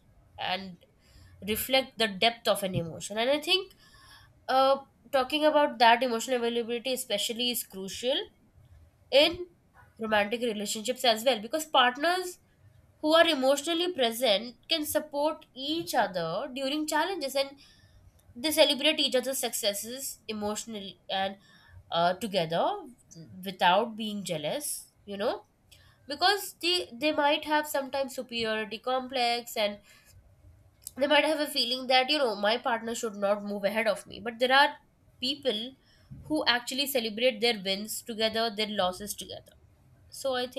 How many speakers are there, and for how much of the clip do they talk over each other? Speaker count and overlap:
one, no overlap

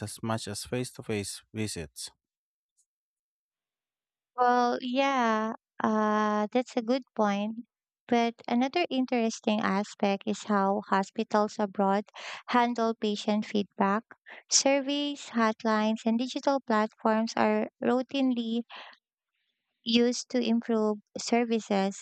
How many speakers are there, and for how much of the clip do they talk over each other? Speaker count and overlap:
two, no overlap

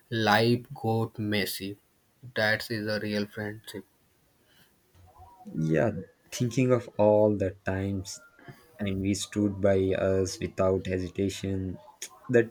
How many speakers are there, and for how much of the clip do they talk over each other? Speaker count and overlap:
two, no overlap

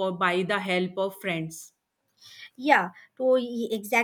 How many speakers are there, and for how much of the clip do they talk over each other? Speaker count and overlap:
two, no overlap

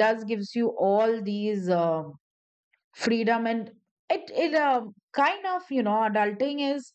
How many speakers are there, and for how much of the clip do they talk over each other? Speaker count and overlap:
one, no overlap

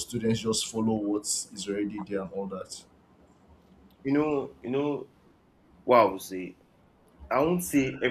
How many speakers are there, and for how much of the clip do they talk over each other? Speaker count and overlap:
two, no overlap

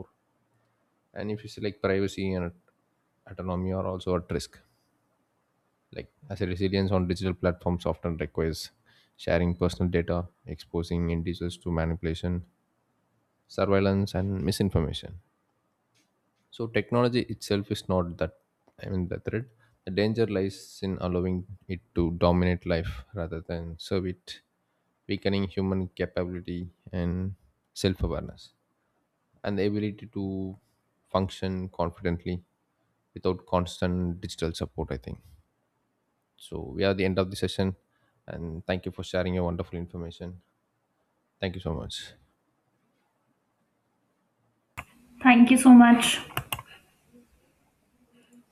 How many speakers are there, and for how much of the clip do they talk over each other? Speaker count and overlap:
two, no overlap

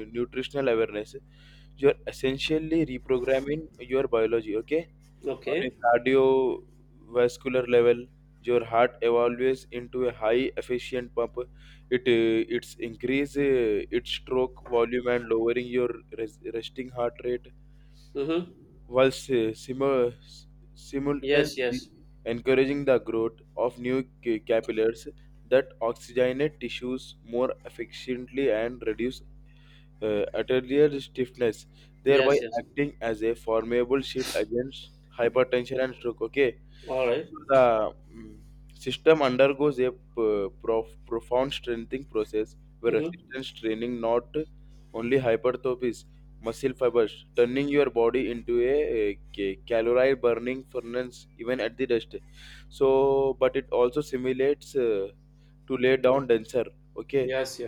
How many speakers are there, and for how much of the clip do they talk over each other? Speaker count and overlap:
two, about 3%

